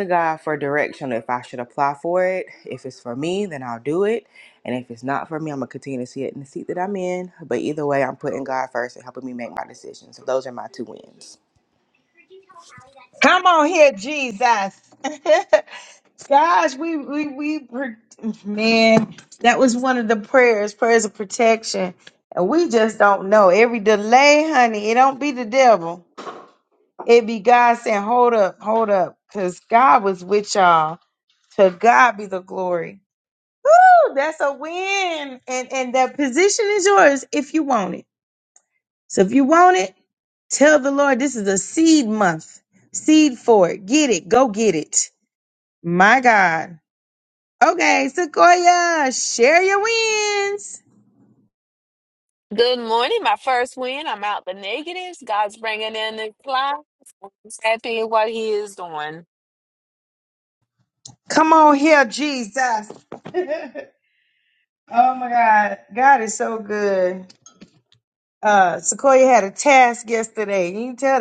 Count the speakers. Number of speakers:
three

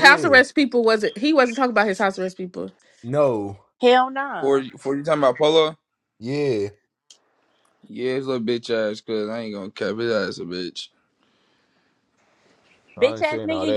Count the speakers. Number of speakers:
four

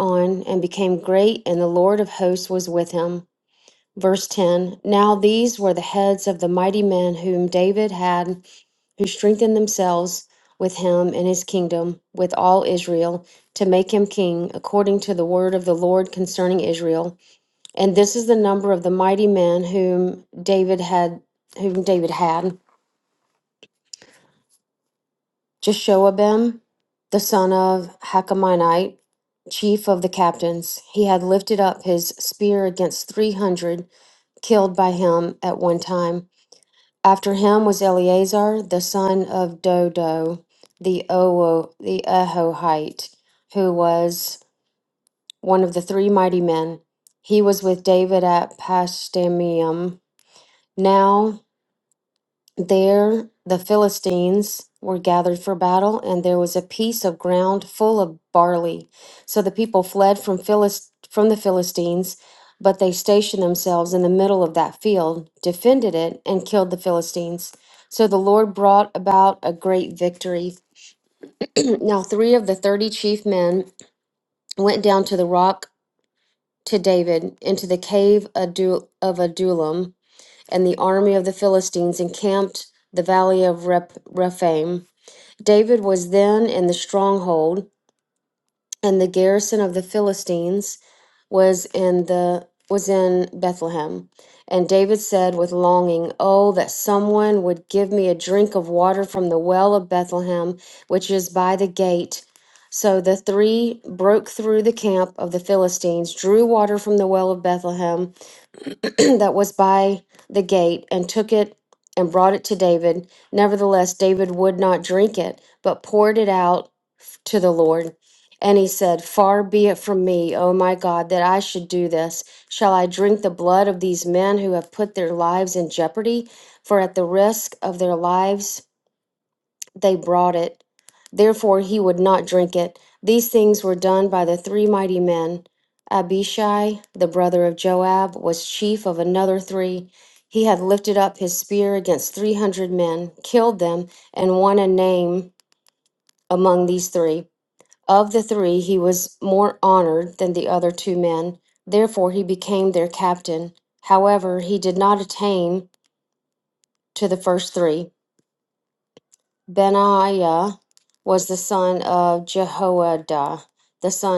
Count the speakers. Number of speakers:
one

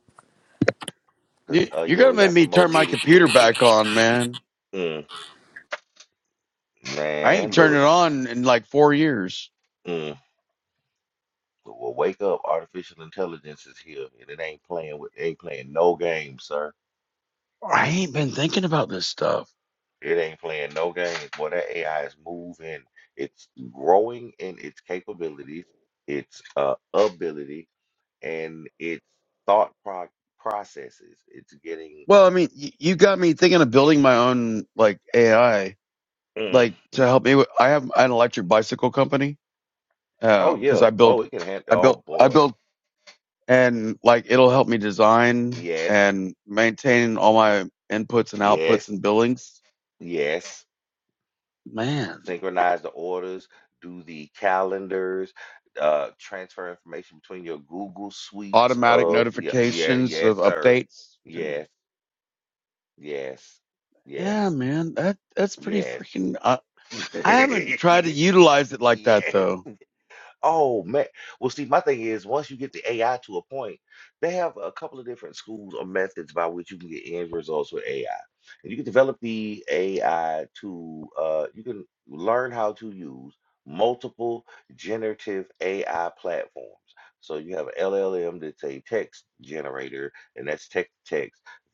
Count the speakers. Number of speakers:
two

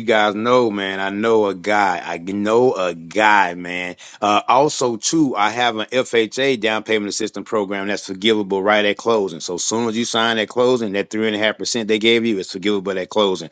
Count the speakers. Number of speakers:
one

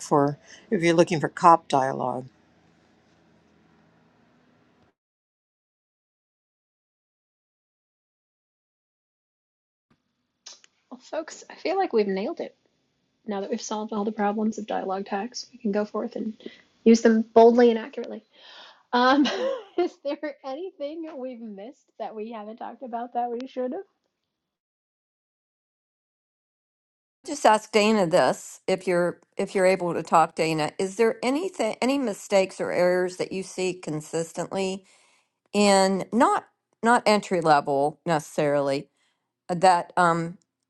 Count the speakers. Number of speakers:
three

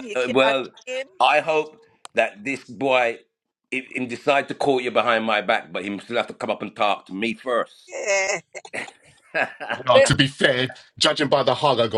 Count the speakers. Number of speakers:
three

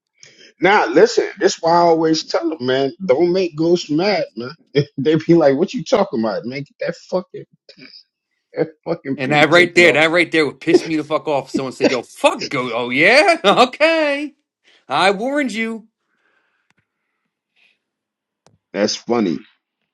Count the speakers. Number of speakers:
two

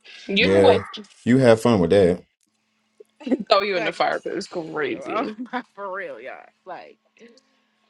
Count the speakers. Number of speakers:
three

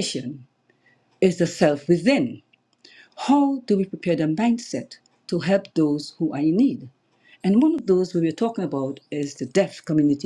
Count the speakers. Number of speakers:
one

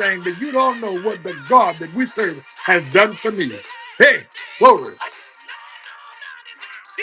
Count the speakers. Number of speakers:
one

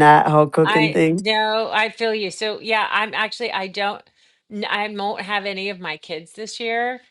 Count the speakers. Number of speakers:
two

